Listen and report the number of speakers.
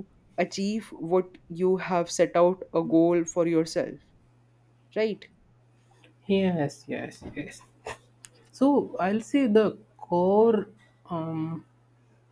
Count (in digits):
2